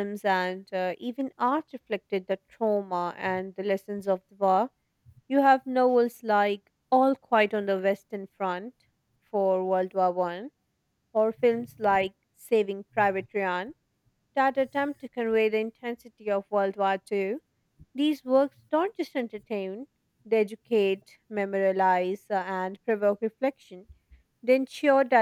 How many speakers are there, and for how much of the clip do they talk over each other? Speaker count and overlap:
1, no overlap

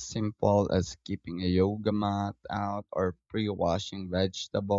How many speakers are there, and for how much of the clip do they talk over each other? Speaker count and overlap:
1, no overlap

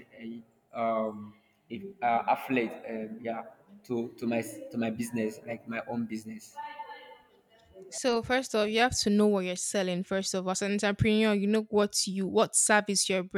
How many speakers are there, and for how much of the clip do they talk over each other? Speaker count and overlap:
2, no overlap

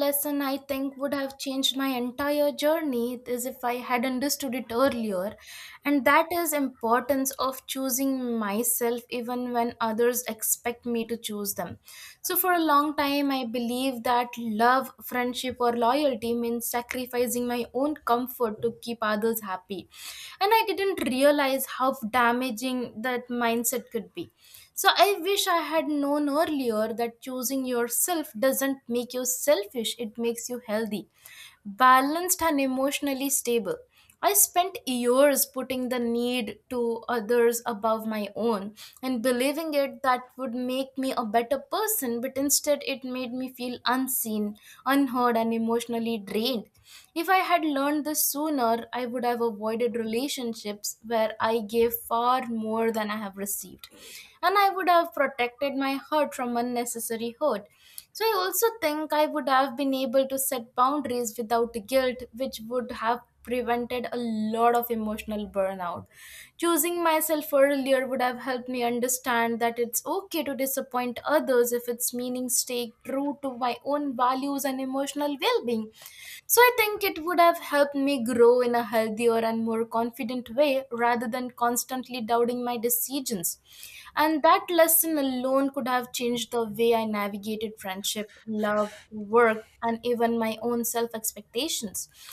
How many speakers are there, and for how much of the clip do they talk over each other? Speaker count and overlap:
1, no overlap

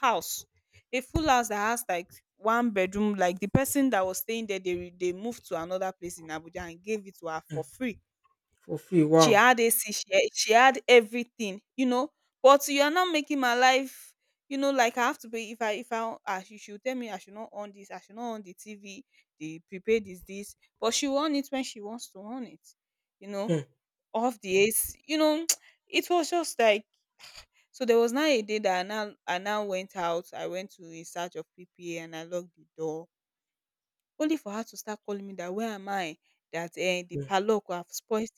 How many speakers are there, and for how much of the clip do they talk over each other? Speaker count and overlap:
2, about 1%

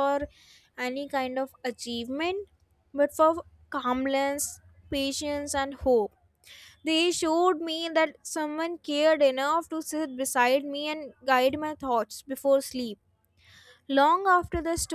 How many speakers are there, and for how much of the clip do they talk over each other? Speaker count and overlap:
1, no overlap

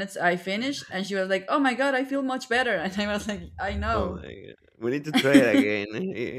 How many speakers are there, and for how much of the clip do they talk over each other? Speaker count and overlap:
2, about 4%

